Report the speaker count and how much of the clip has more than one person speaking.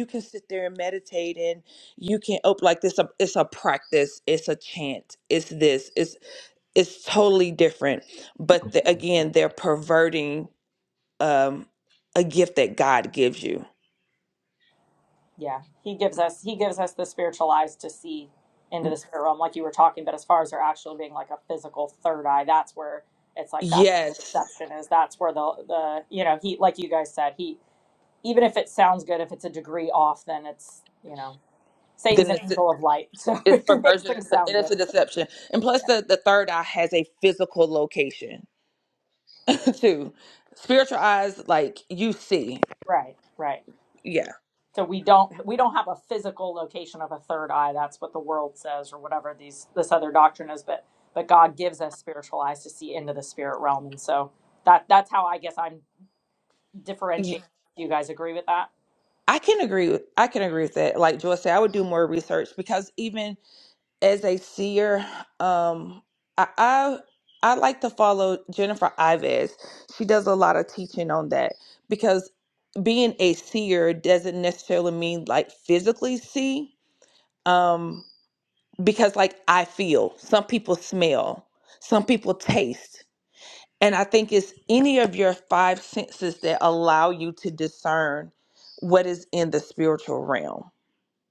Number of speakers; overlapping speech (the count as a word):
two, about 3%